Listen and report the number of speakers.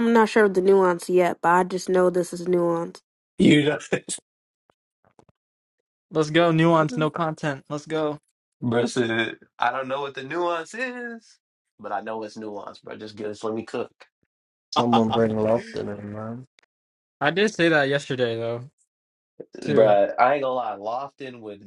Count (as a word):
four